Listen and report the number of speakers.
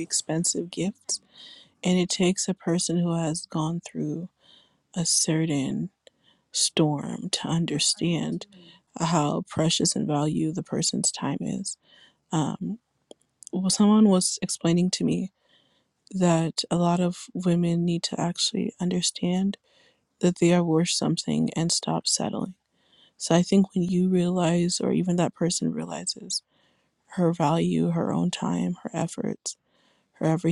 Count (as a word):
one